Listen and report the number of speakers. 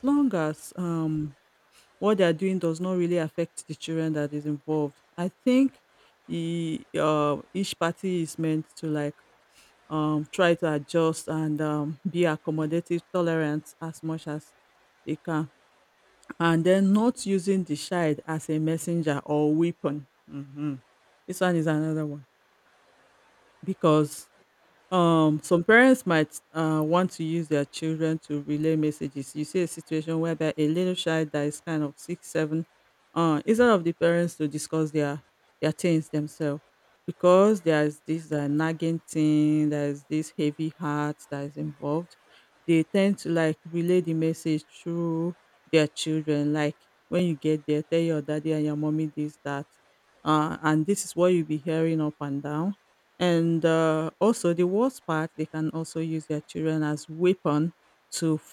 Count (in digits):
1